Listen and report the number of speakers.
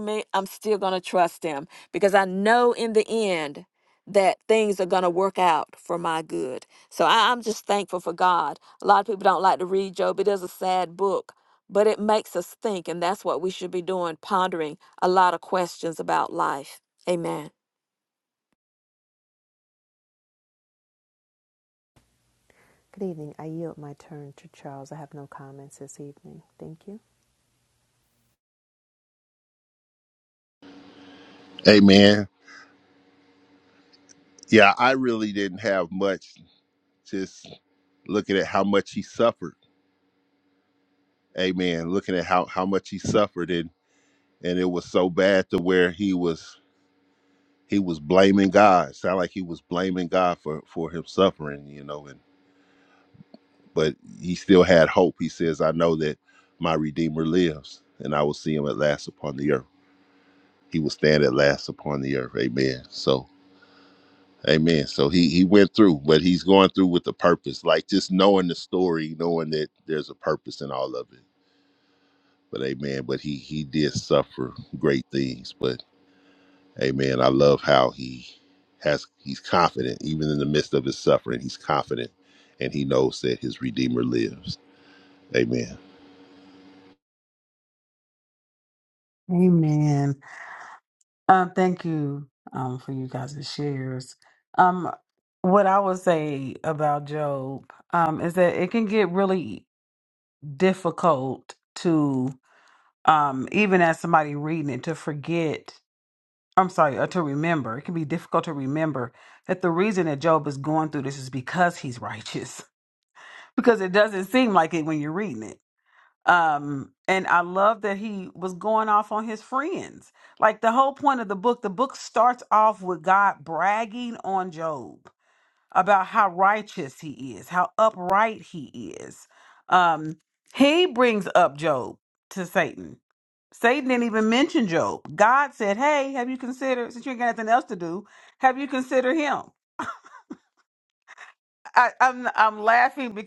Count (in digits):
4